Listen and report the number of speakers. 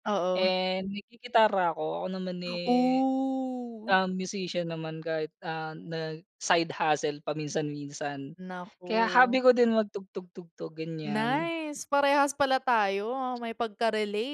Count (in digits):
2